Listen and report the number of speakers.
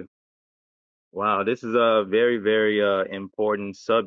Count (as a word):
one